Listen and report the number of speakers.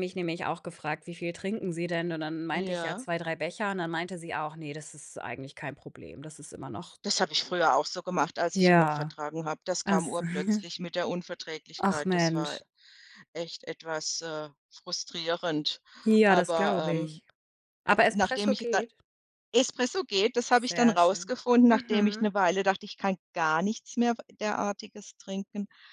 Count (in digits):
2